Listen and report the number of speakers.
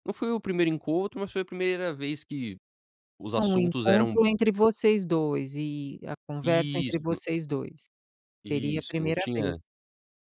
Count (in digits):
2